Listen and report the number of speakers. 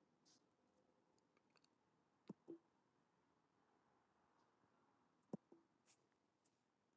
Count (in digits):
0